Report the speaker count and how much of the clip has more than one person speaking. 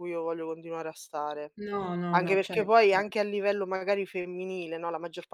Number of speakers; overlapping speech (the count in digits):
2, about 11%